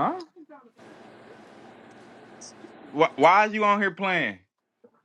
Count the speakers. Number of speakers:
one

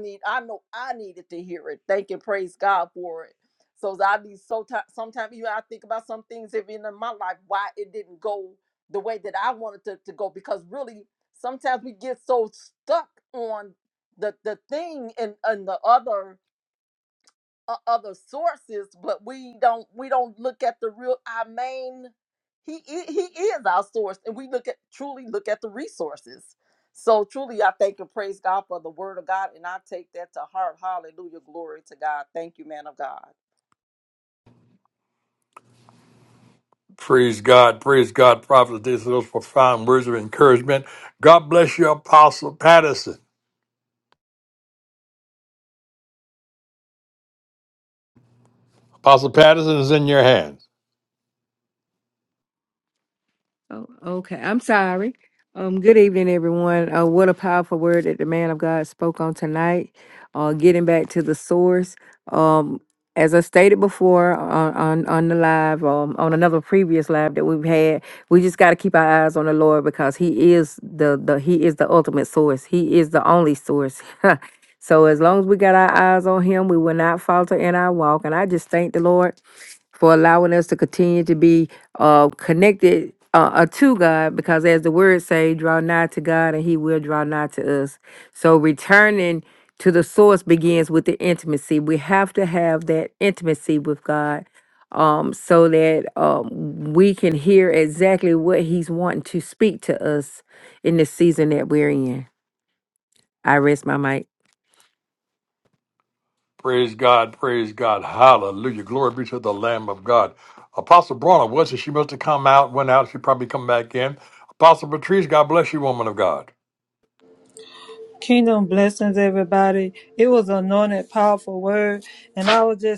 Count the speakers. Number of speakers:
four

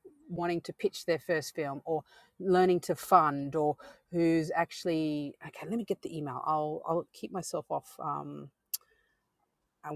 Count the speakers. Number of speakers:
one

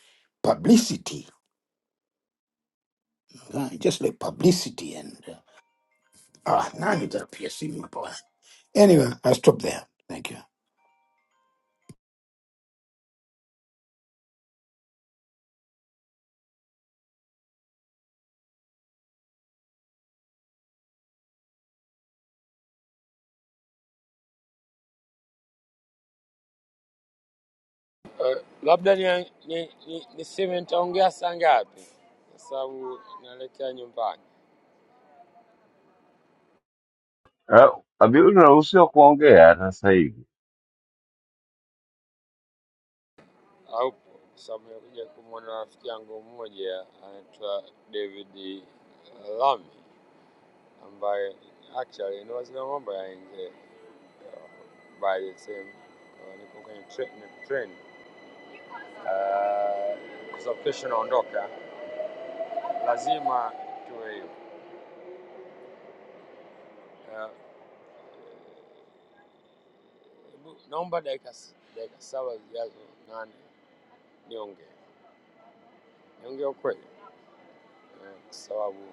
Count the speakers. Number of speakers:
three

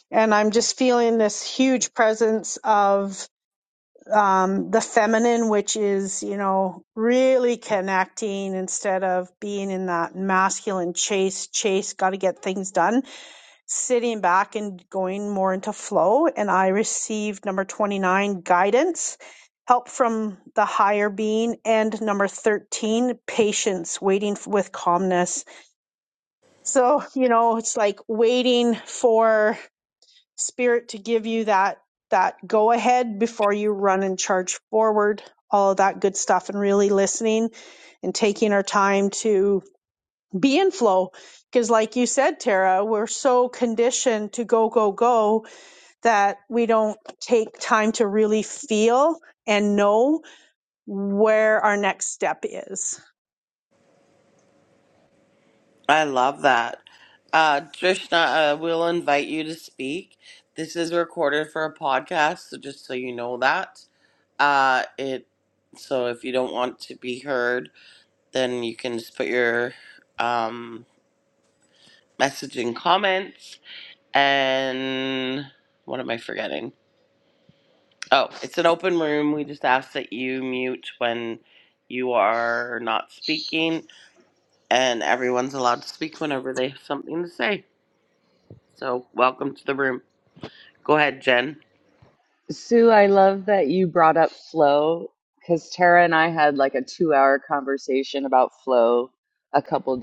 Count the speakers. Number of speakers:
three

